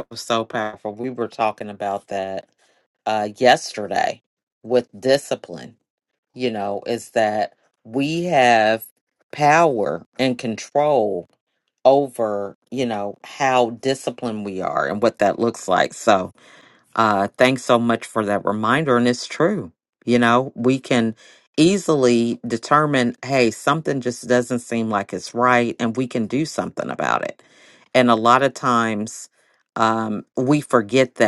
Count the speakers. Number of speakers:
1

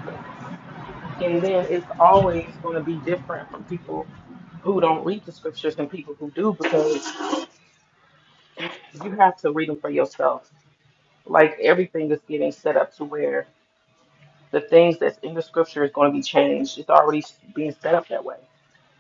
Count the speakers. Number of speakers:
1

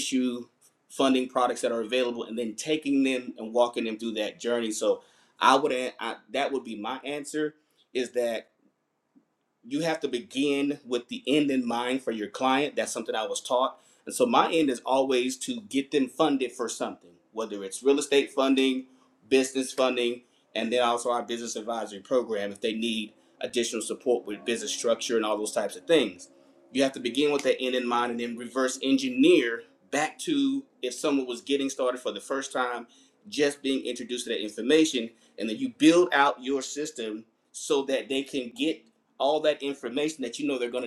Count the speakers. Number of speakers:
1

